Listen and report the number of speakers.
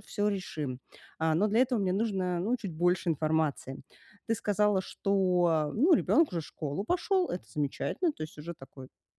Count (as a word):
one